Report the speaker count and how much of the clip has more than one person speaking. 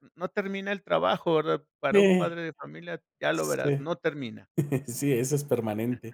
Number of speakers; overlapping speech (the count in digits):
2, about 12%